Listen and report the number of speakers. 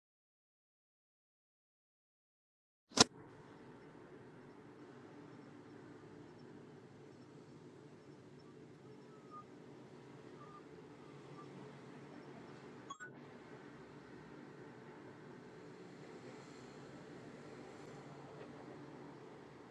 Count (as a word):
zero